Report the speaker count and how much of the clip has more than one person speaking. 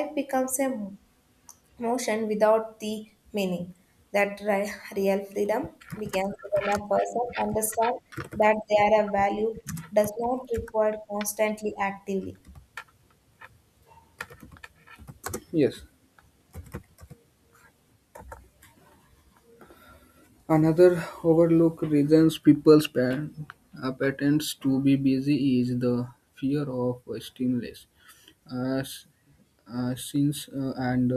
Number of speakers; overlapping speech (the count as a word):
two, no overlap